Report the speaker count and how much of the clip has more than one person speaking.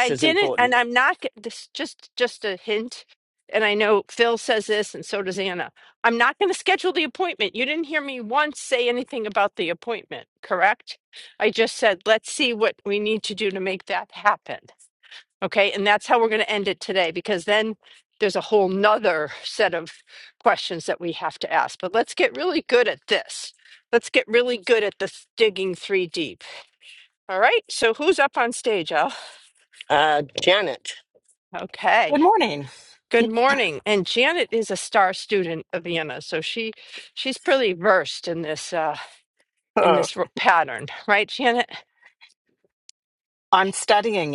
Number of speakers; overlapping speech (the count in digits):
3, about 3%